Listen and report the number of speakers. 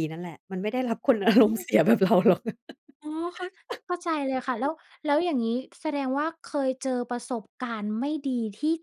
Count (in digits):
2